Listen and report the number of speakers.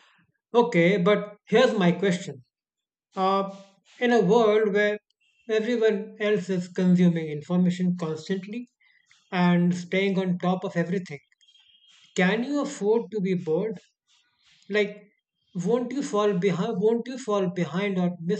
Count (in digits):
1